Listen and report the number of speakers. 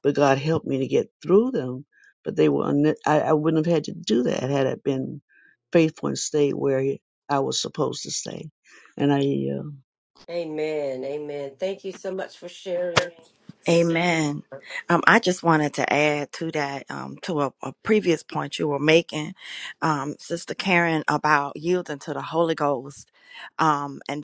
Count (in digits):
3